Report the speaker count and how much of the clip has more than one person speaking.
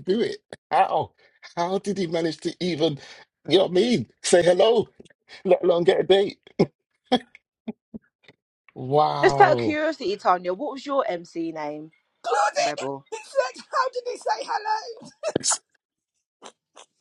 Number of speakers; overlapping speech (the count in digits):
3, about 4%